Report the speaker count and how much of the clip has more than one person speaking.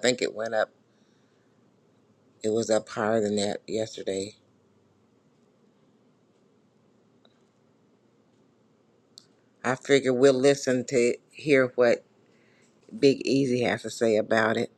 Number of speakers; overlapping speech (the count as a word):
one, no overlap